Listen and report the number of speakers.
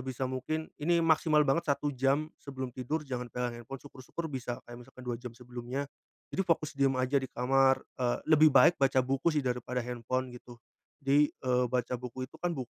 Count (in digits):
1